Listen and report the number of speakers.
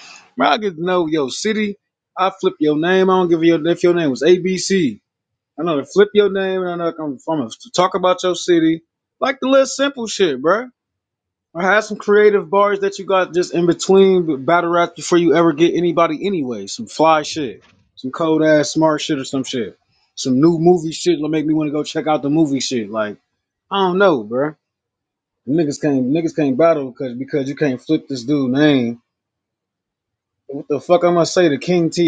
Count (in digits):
1